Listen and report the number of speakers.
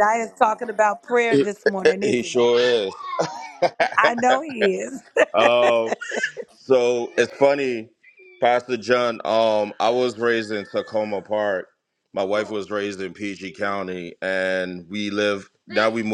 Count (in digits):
2